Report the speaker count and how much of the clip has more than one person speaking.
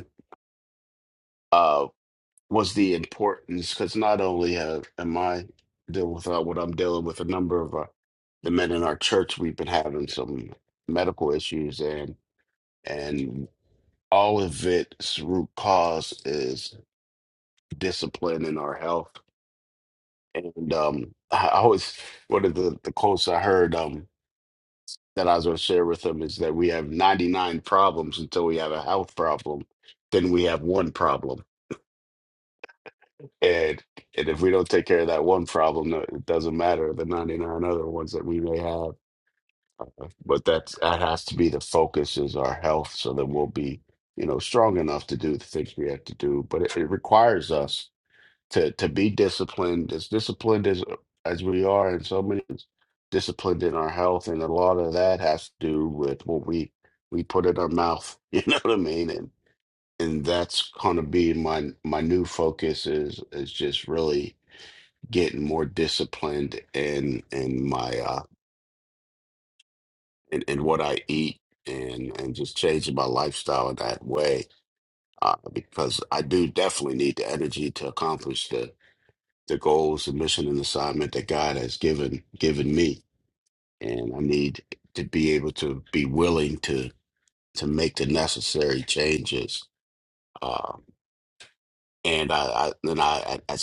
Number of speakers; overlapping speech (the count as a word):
one, no overlap